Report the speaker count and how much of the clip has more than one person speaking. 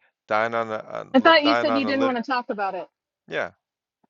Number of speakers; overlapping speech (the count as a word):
two, about 17%